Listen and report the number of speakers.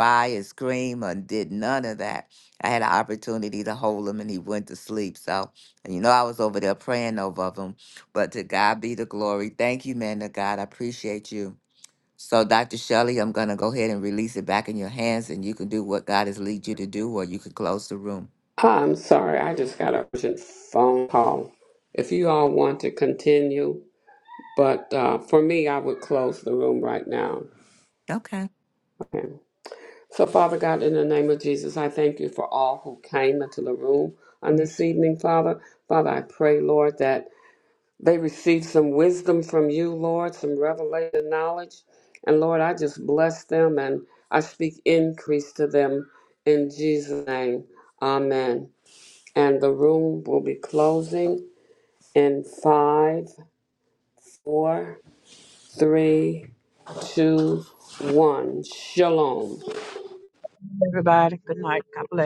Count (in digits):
3